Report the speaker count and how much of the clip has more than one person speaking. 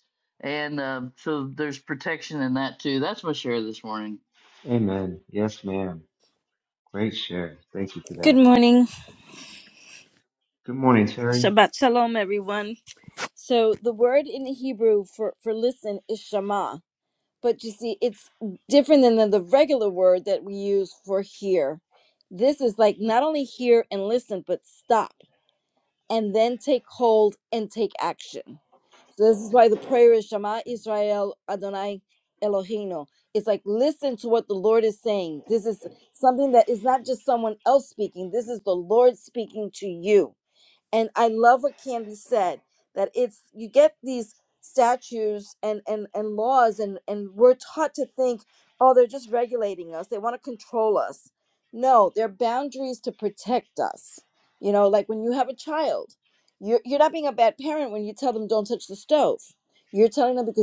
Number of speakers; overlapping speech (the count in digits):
3, about 1%